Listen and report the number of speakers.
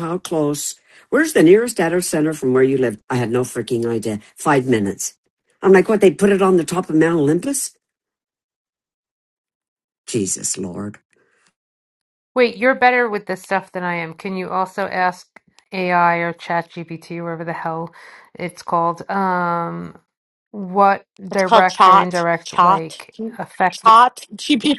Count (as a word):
three